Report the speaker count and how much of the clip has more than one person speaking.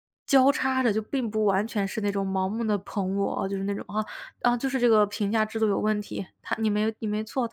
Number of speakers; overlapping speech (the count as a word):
one, no overlap